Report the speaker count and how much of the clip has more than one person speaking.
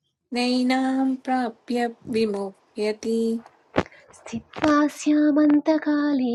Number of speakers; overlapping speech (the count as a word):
two, no overlap